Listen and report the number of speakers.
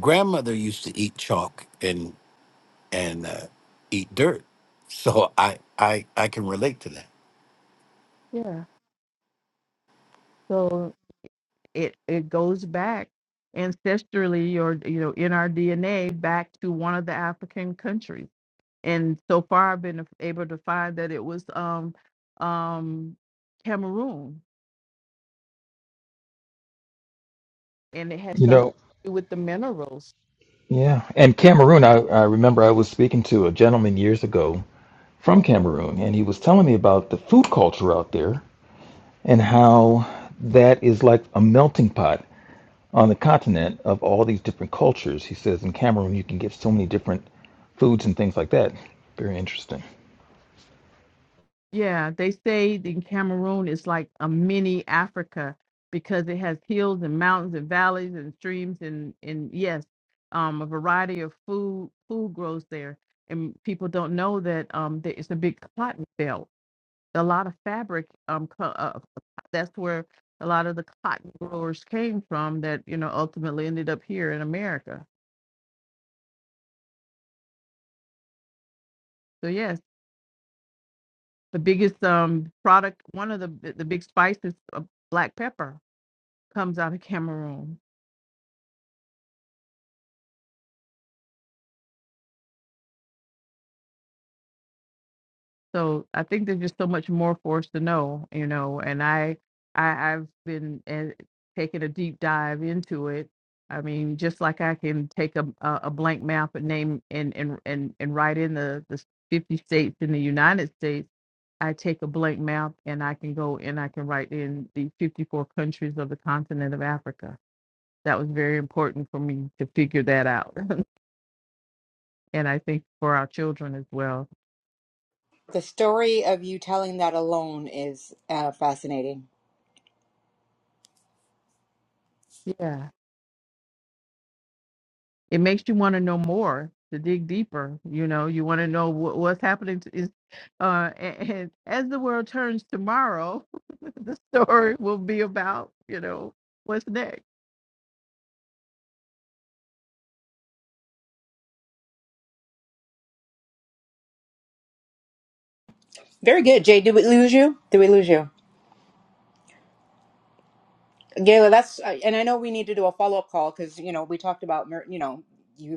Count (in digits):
4